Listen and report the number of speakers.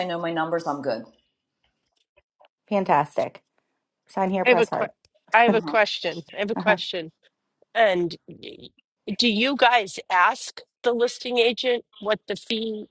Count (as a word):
three